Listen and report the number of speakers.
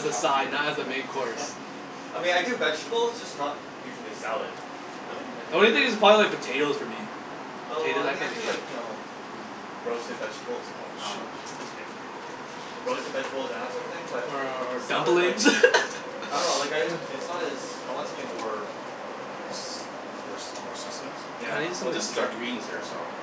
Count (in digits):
3